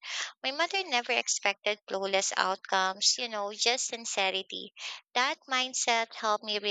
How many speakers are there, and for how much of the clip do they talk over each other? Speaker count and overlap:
one, no overlap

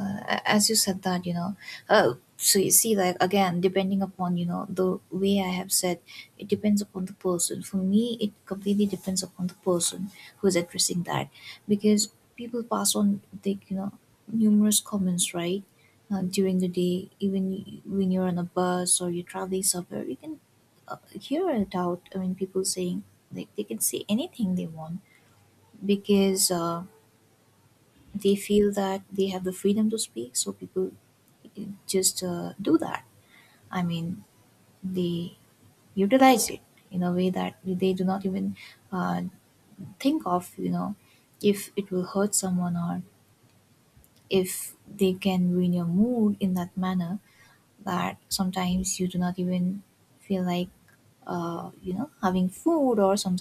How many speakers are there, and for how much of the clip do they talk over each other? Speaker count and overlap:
one, no overlap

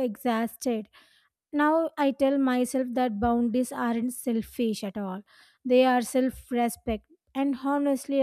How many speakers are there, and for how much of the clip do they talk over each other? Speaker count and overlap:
one, no overlap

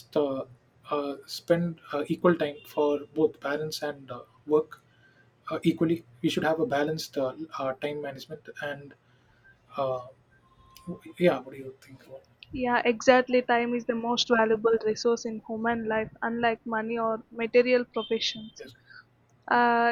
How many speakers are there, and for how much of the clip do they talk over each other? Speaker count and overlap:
two, no overlap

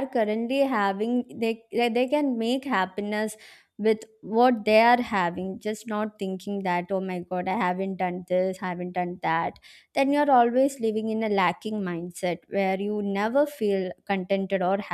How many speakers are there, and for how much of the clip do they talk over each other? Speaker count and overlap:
one, no overlap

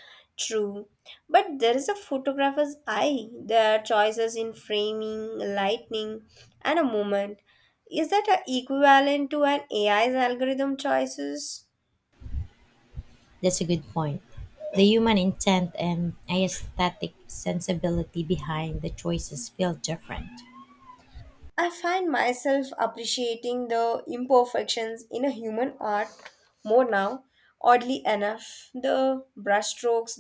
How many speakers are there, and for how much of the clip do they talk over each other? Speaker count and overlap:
two, no overlap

